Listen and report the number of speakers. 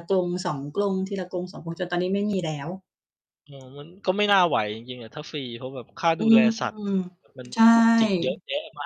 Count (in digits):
2